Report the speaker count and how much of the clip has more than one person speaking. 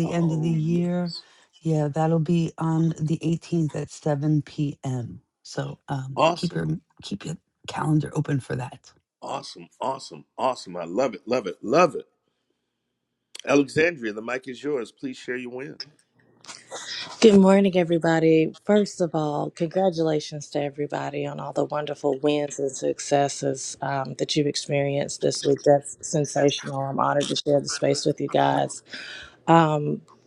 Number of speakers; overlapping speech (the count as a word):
three, about 3%